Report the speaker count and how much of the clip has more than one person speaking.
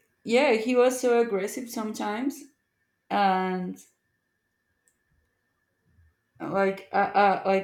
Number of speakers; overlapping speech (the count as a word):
one, no overlap